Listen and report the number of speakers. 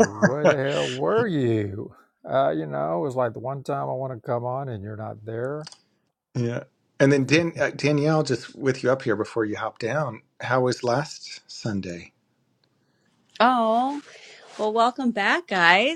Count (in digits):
3